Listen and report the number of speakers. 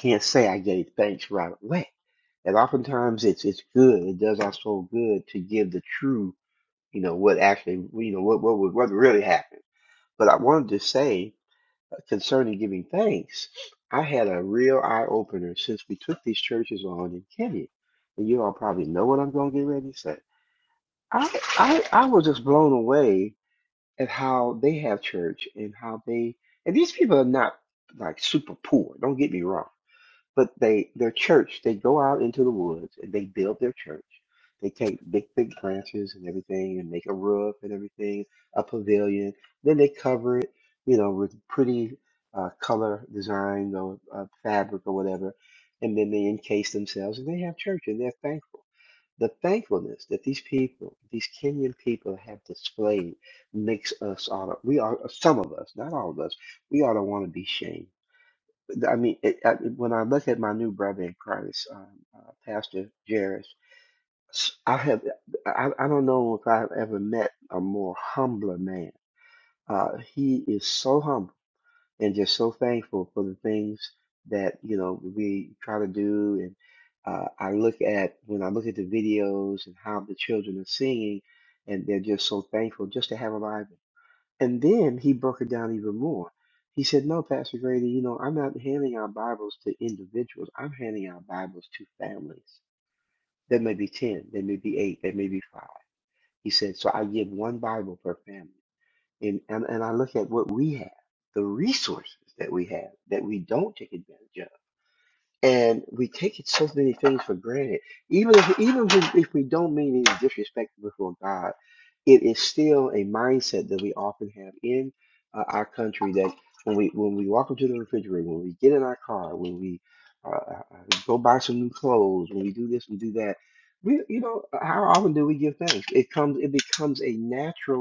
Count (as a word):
one